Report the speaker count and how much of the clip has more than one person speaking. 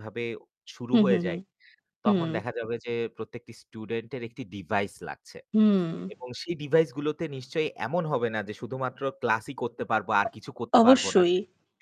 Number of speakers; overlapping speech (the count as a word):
two, about 11%